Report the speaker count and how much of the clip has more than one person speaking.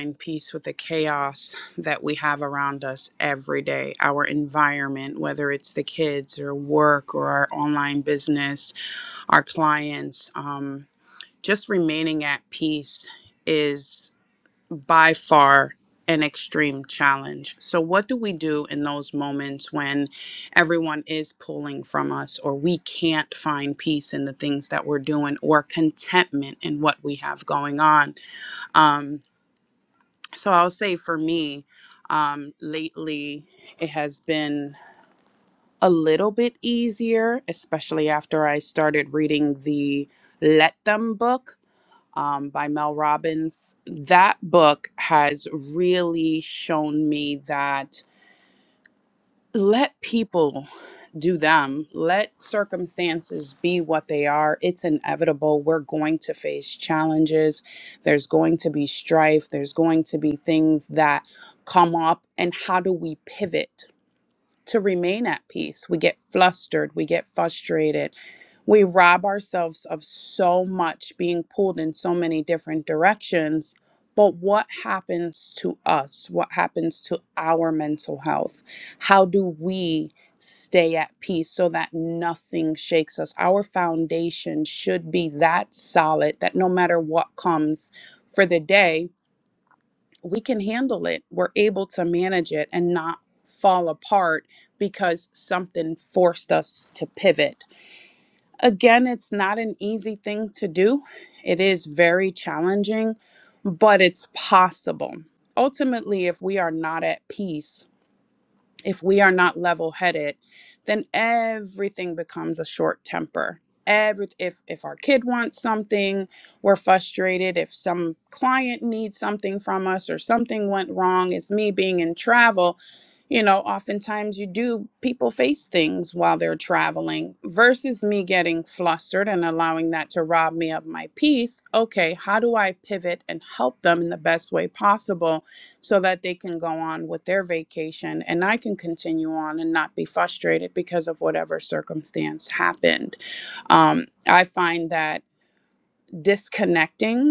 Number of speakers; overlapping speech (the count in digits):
1, no overlap